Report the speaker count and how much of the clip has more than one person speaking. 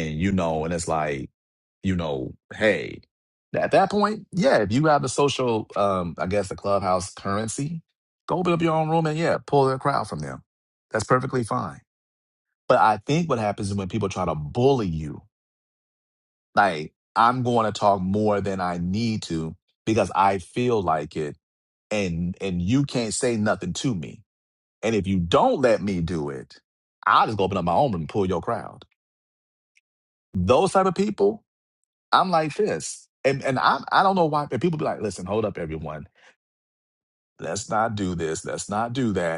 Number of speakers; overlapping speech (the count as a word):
one, no overlap